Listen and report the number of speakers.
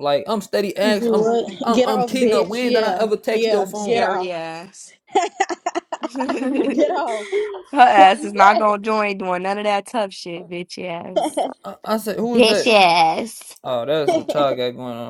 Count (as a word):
three